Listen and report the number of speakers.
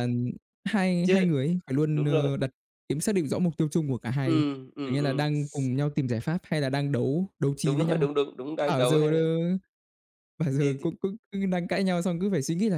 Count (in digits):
2